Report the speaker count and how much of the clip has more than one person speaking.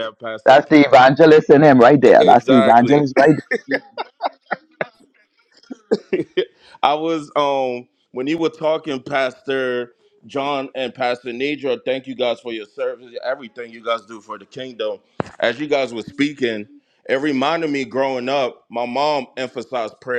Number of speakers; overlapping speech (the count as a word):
two, about 7%